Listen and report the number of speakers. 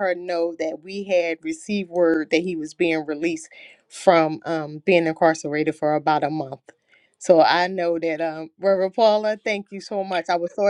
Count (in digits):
1